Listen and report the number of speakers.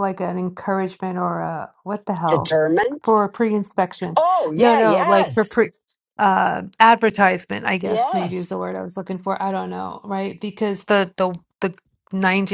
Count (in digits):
2